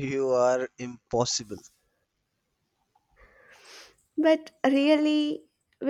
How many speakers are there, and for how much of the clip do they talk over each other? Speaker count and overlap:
two, no overlap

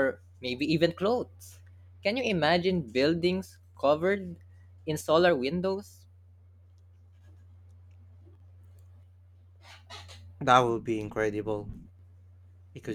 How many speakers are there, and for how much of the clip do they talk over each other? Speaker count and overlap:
two, no overlap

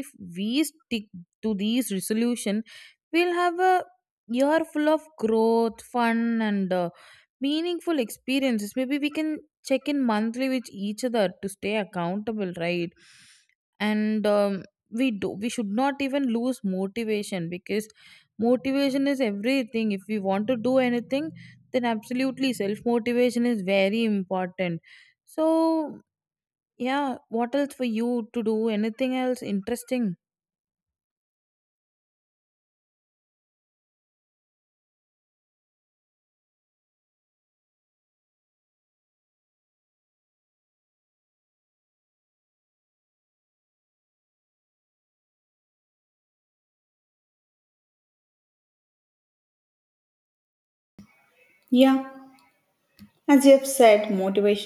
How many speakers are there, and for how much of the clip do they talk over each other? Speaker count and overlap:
two, no overlap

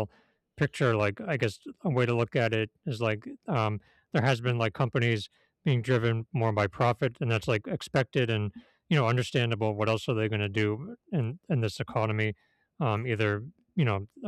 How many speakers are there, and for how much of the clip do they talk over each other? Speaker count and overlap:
one, no overlap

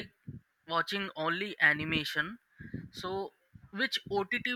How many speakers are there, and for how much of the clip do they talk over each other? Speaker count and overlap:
one, no overlap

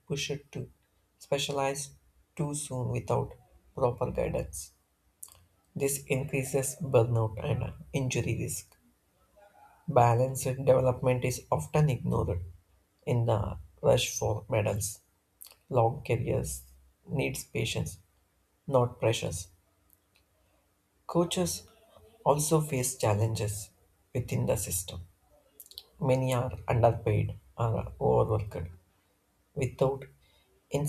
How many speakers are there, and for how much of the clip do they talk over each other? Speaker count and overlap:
one, no overlap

